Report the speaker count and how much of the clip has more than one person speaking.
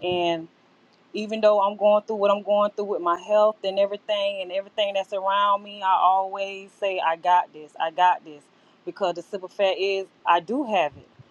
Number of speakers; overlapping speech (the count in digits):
1, no overlap